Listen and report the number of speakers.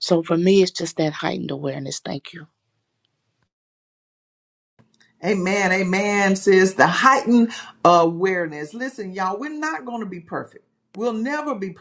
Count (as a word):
two